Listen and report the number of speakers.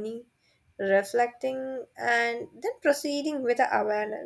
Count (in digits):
1